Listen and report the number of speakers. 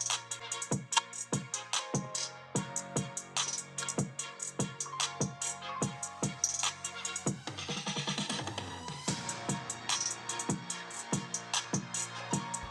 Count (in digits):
0